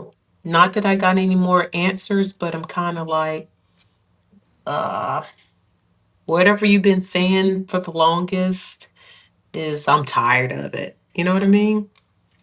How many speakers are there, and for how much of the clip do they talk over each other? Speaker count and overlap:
one, no overlap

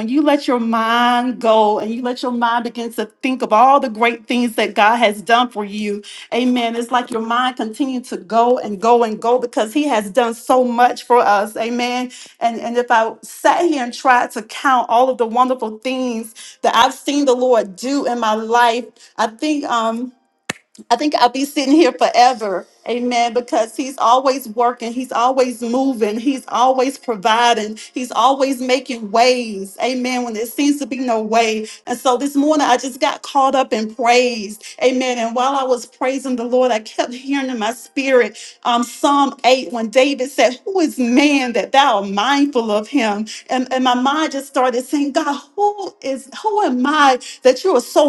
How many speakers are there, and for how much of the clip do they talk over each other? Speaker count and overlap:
one, no overlap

